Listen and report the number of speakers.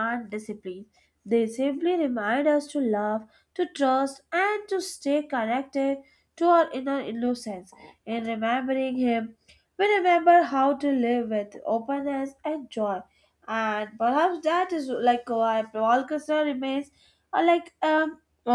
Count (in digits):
1